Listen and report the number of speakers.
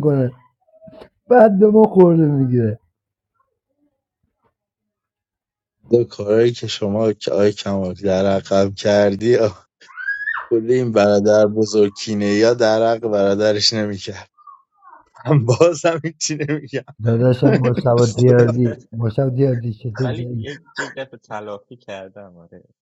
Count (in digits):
3